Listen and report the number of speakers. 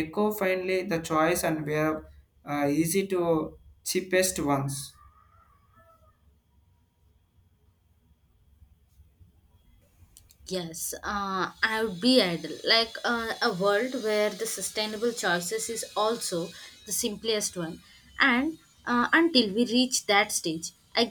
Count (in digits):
2